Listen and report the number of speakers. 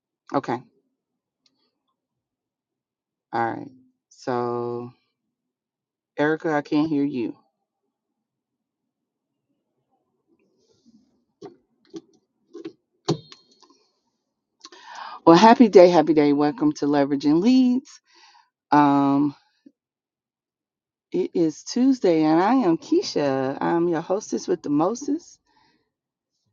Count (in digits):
1